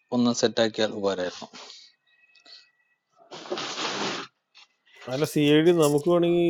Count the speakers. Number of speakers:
two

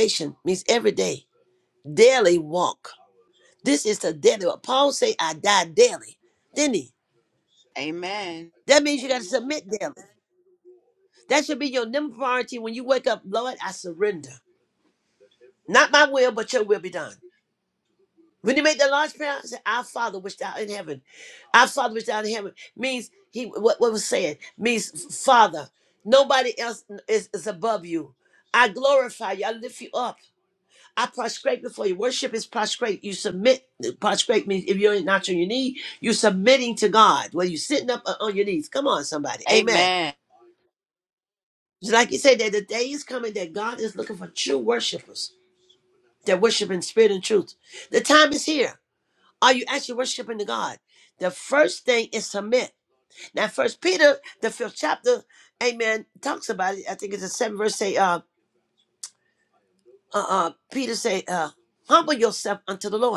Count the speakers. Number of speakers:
two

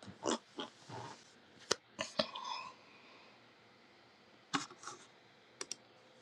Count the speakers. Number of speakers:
zero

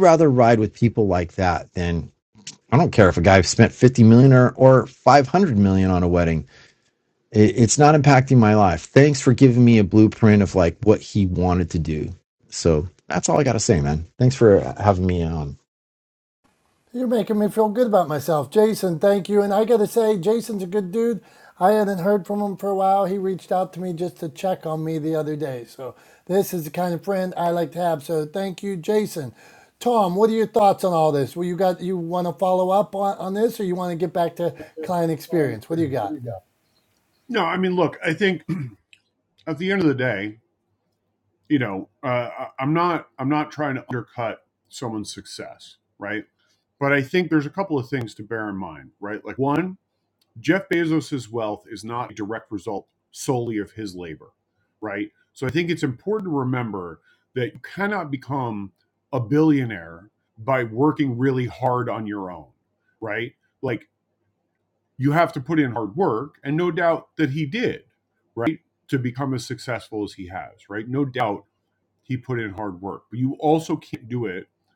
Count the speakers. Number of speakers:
three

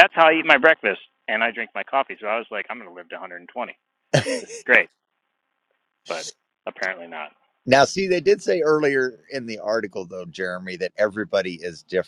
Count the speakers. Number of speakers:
two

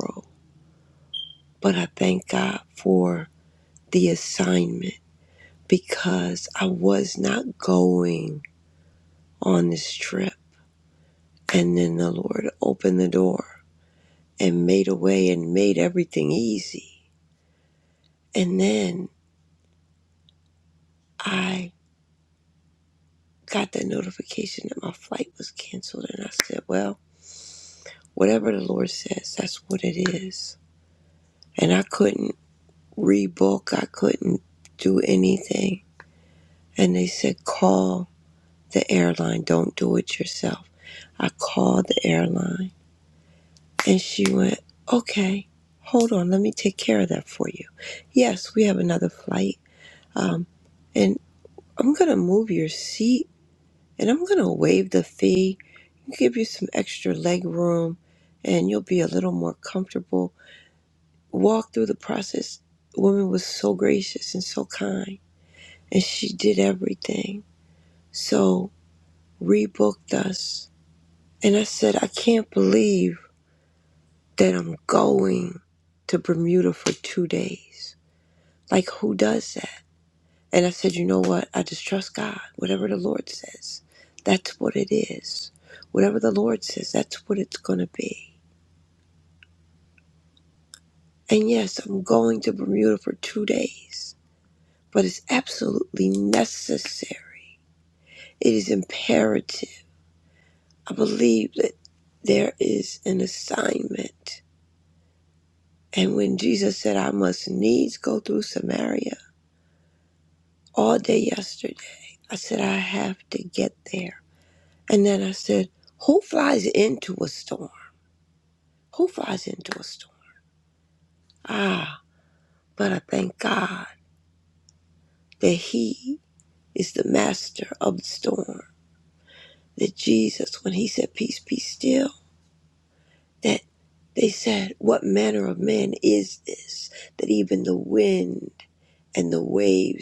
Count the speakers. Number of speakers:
one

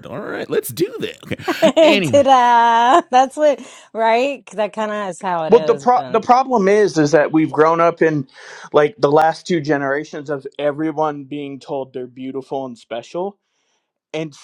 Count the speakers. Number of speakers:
three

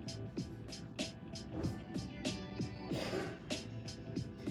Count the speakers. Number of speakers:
zero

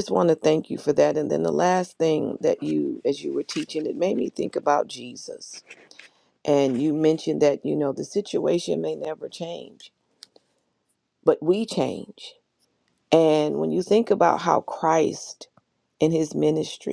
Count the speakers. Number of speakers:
one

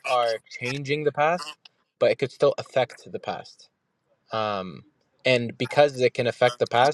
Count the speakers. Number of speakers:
one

